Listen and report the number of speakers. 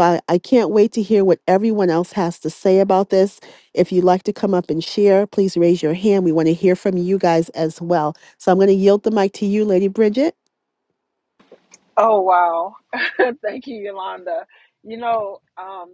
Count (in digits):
2